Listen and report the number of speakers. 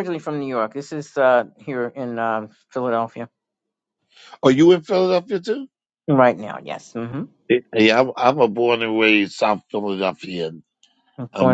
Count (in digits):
2